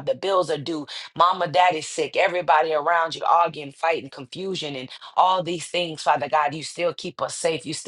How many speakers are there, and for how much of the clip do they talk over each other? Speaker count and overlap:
1, no overlap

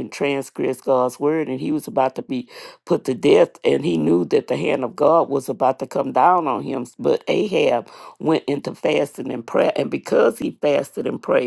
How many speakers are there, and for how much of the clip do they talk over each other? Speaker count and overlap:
1, no overlap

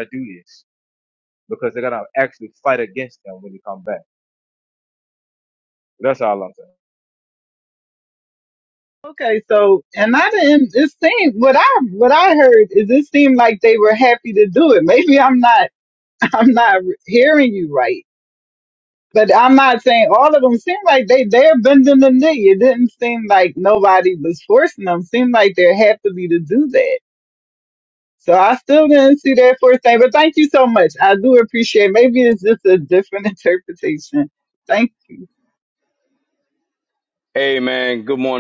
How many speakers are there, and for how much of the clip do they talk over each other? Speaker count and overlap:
3, no overlap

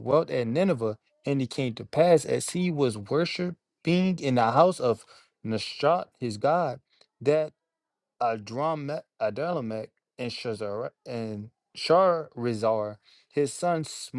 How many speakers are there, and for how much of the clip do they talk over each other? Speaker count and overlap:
1, no overlap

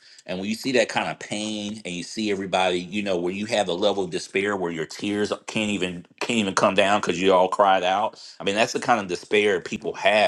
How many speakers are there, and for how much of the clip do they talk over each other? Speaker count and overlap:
1, no overlap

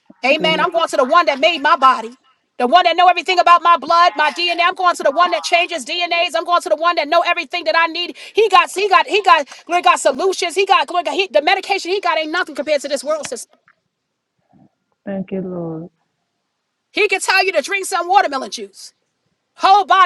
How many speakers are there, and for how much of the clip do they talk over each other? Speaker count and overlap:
2, about 14%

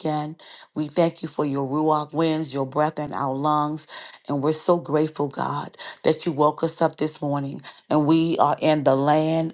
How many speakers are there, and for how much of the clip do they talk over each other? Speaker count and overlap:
1, no overlap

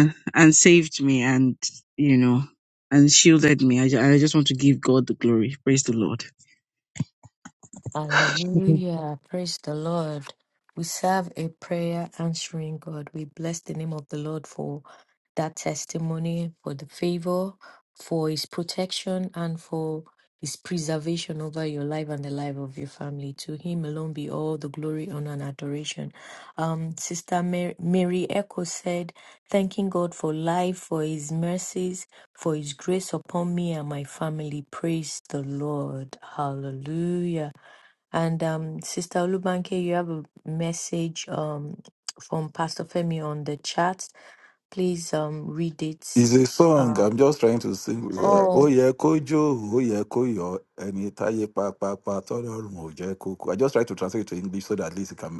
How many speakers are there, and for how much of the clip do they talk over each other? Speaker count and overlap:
3, about 2%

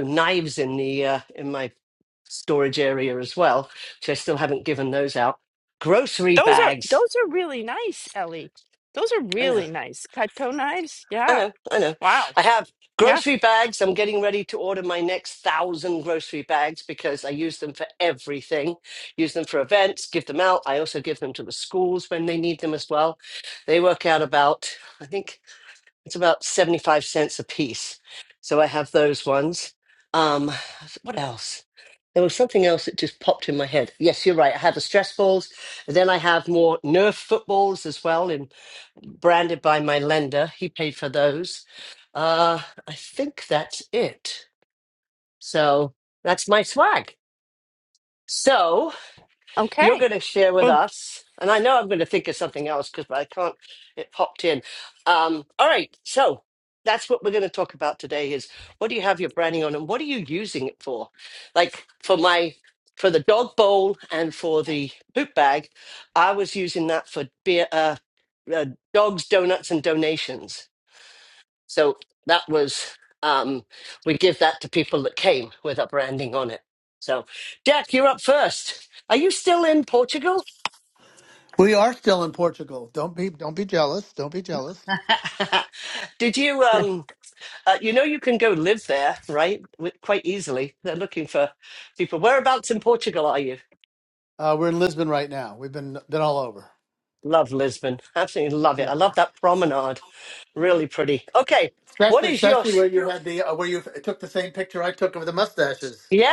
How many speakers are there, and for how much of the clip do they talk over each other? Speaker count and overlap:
3, about 2%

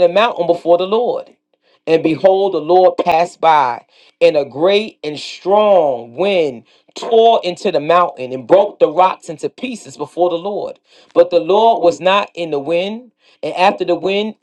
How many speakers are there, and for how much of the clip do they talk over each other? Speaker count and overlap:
1, no overlap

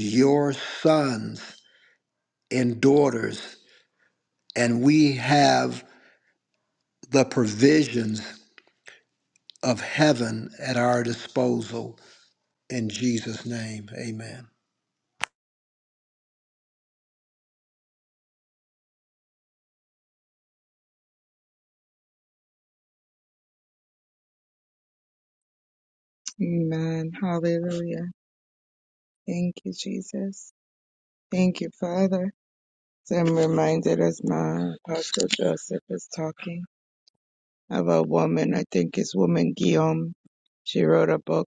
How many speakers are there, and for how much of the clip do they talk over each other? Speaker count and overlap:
2, no overlap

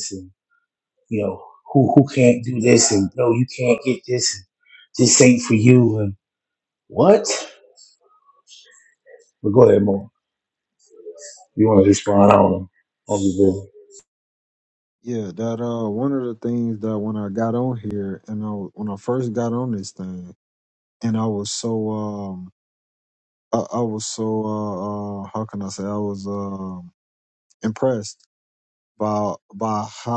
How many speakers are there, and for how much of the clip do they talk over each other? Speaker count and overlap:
2, no overlap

